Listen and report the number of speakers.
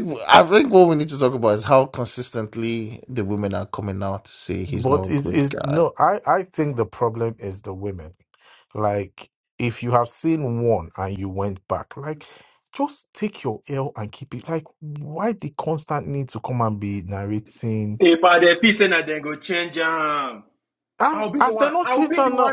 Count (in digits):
3